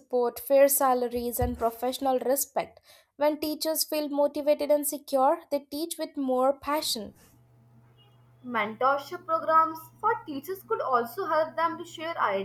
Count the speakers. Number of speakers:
2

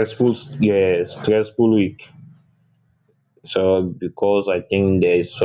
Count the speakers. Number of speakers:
1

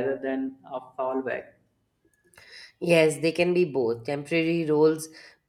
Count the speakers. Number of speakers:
2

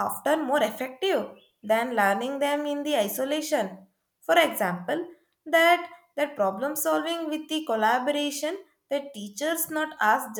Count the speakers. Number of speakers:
1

